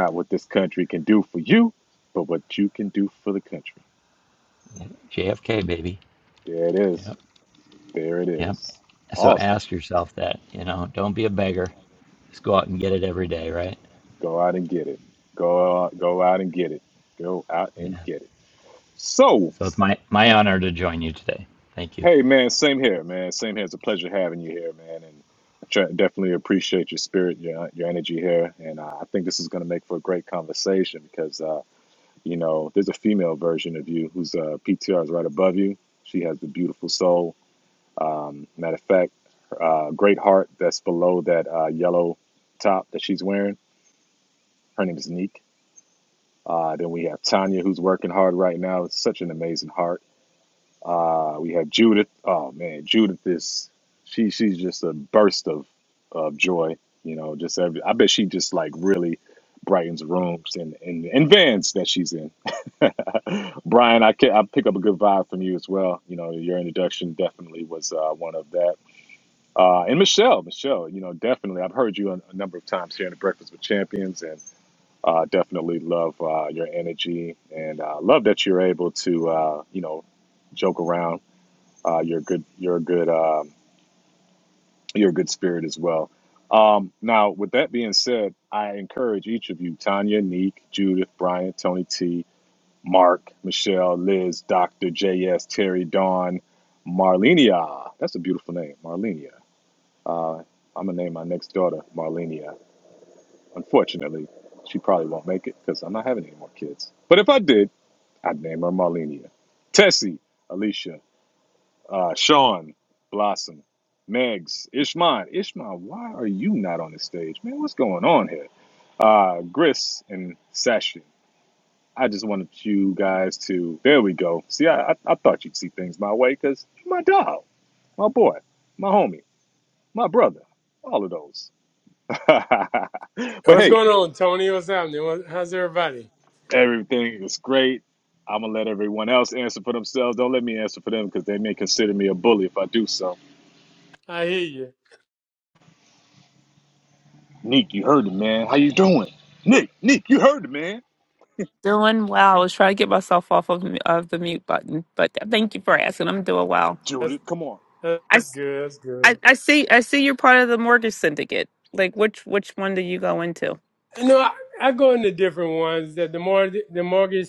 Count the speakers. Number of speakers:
4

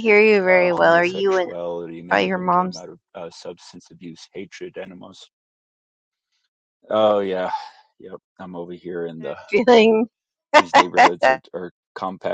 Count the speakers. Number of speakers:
2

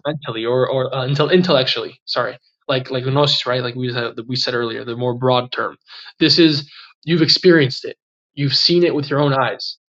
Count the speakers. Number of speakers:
1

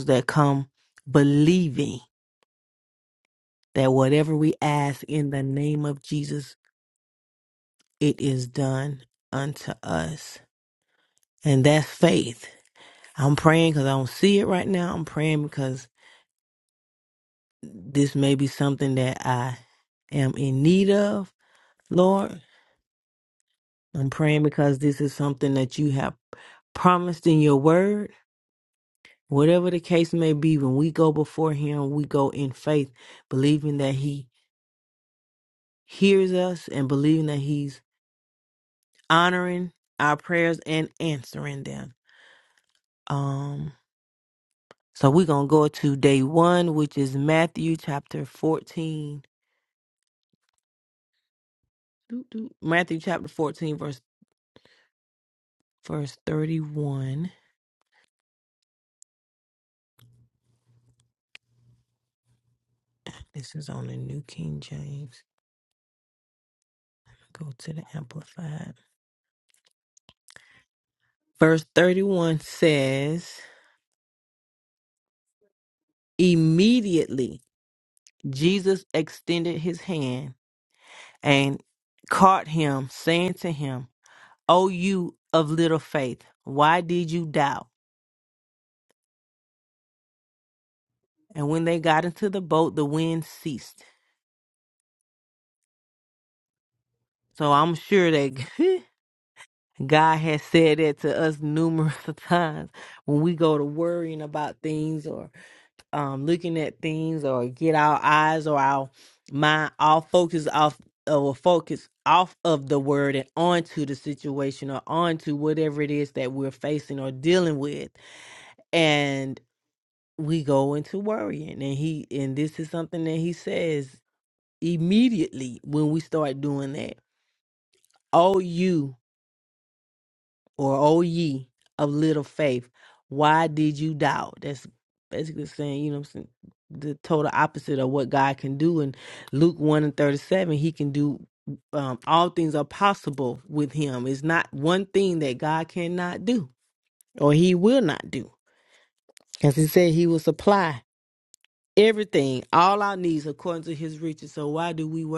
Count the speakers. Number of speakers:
1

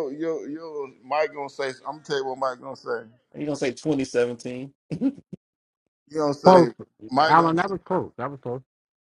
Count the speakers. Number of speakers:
3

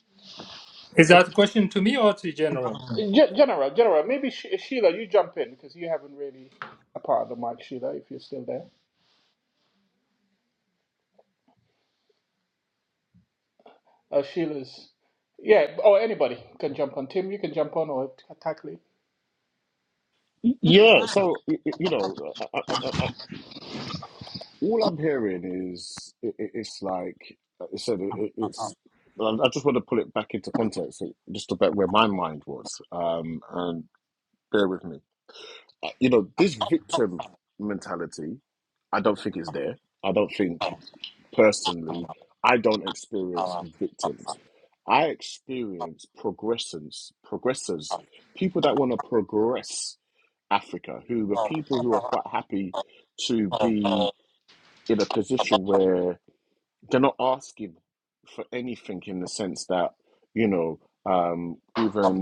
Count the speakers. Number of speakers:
3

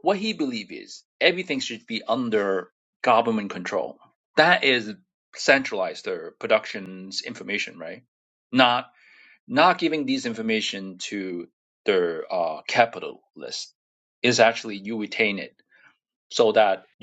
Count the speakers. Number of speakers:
1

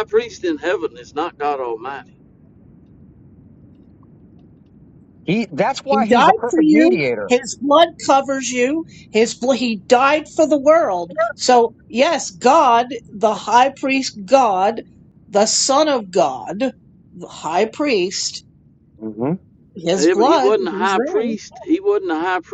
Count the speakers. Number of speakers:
3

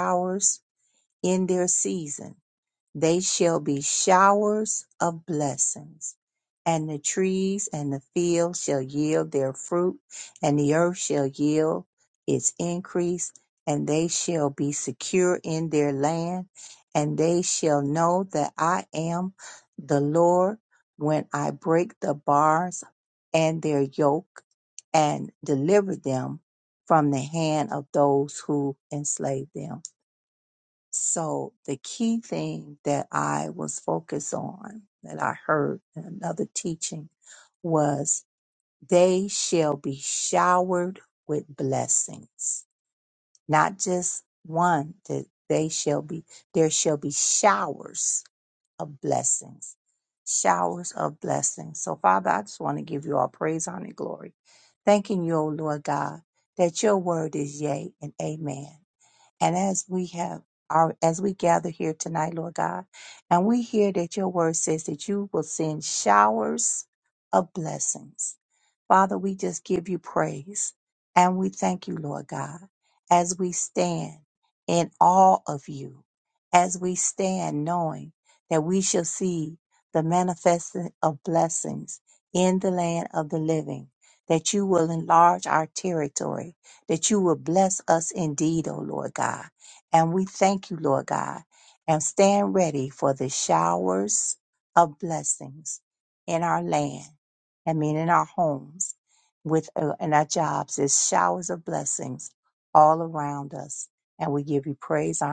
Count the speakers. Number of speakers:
1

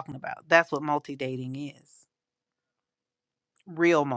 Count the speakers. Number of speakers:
1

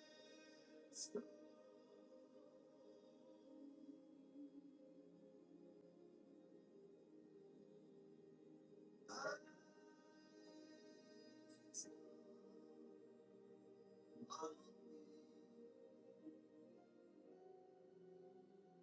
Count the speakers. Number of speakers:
0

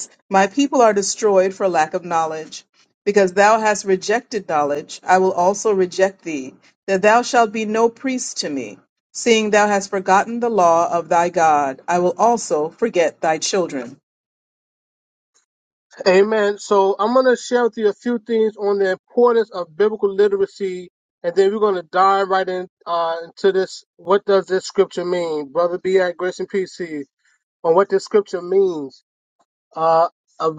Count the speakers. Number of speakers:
2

